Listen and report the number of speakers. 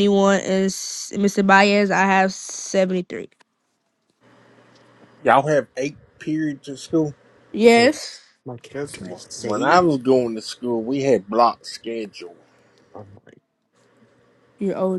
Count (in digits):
3